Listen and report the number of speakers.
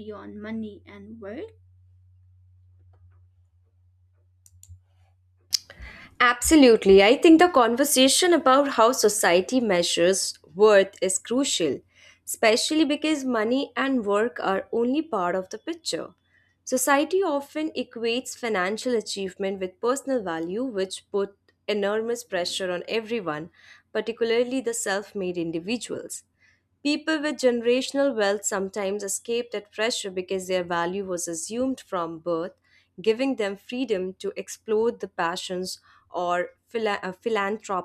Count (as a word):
two